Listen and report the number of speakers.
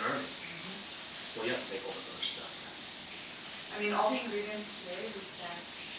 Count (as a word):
two